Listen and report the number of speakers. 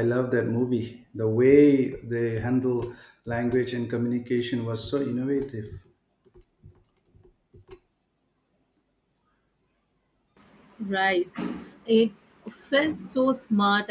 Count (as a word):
two